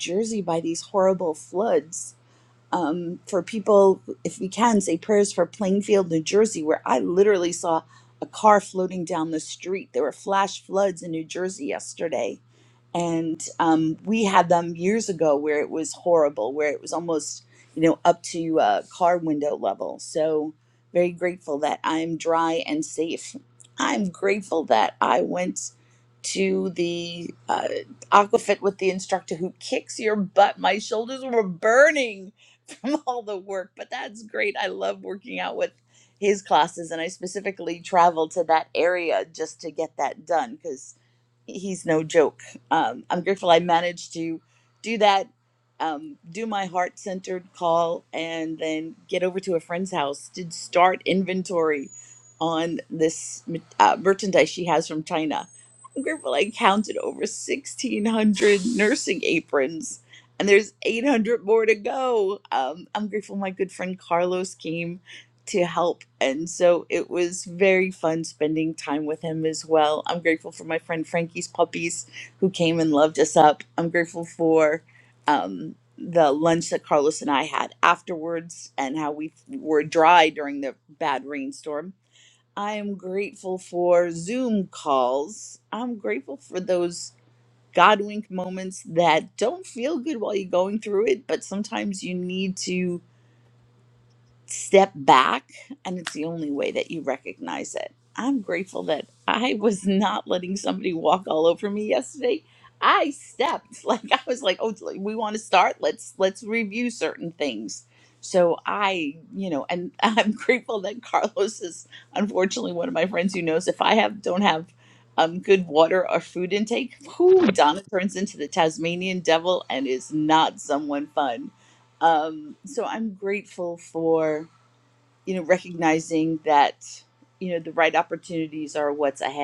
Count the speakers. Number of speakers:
1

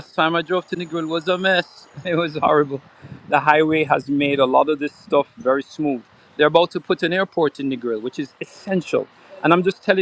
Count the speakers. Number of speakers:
1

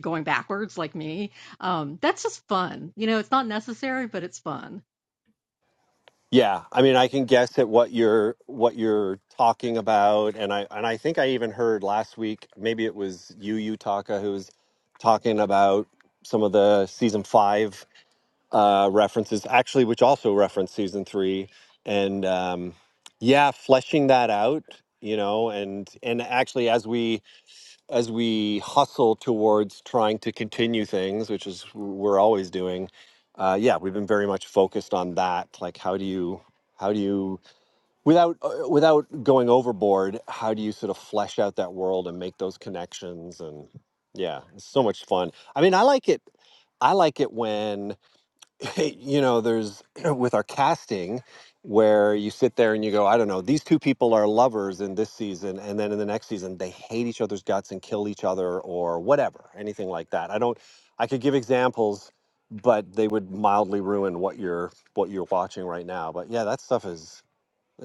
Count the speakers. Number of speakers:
2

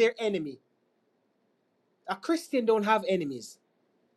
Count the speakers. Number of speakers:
1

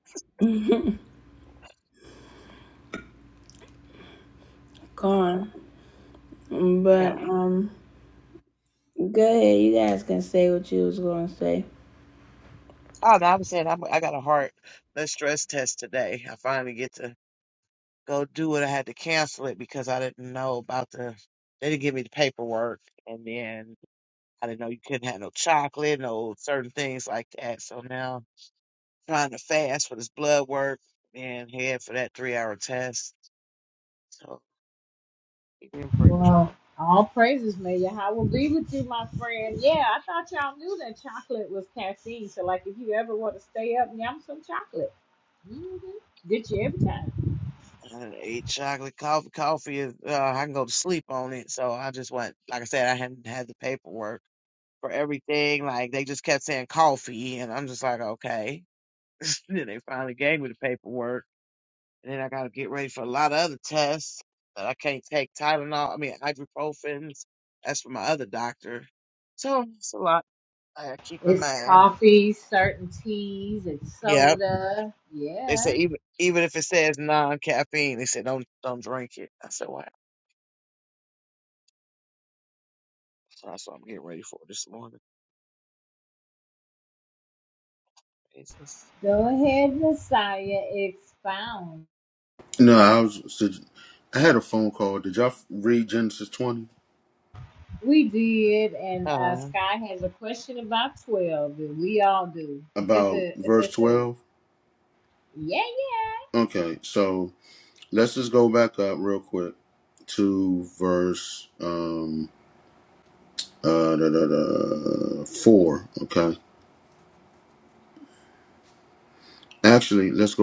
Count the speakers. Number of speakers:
4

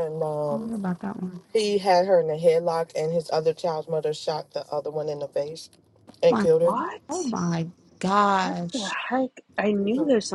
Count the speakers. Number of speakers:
3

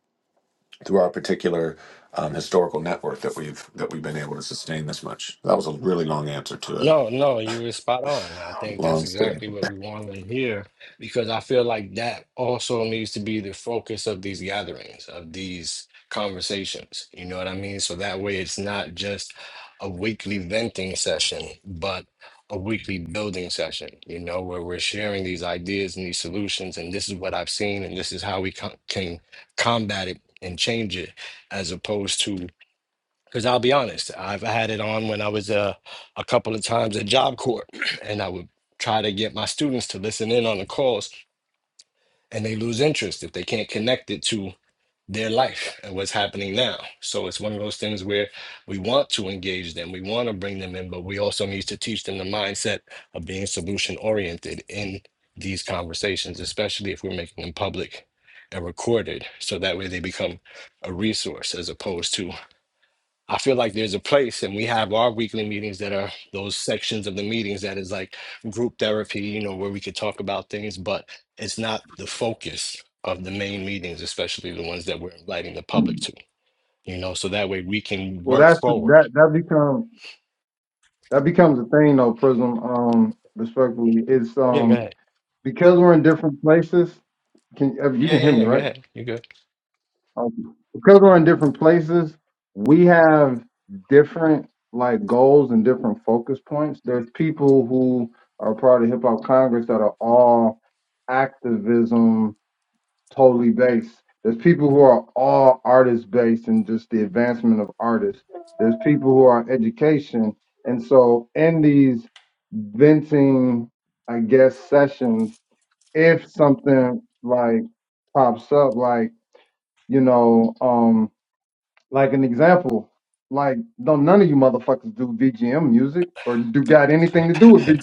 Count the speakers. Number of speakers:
3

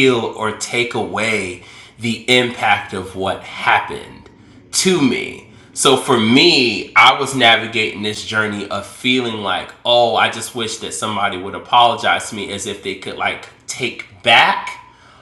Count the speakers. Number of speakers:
1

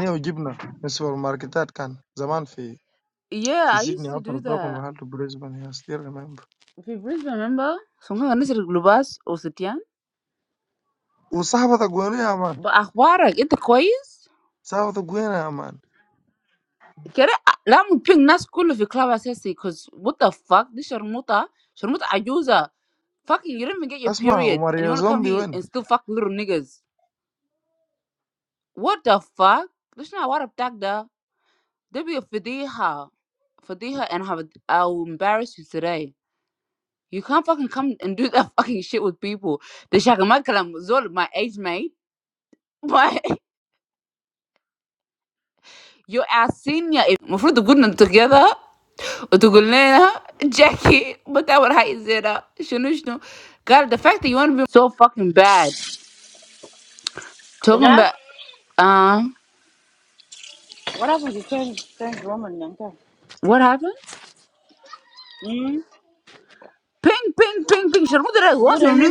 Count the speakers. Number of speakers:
3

